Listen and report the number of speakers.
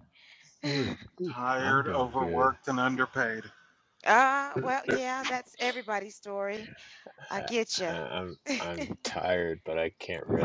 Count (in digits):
3